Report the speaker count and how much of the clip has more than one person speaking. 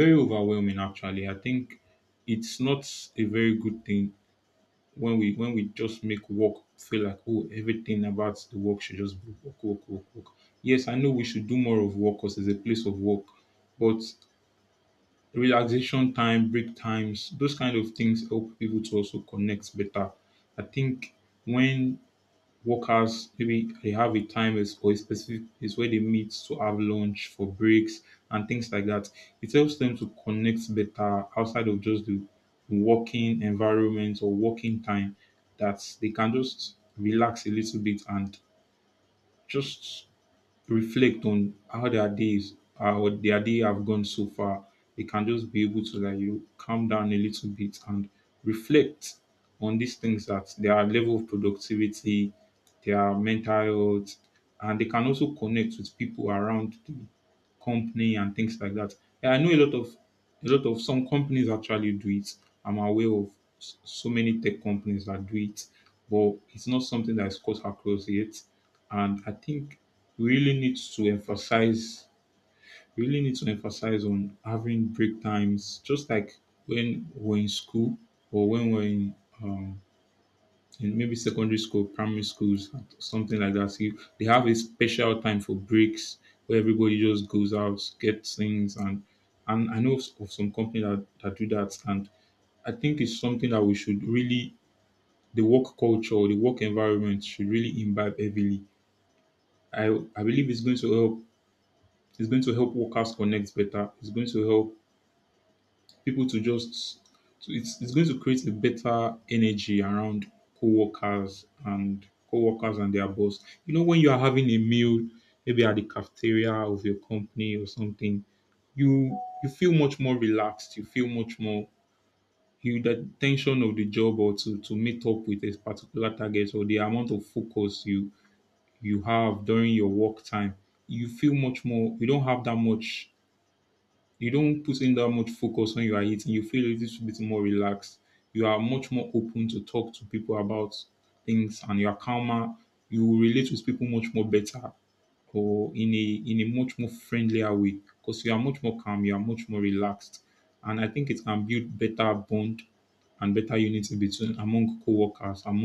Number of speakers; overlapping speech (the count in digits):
1, no overlap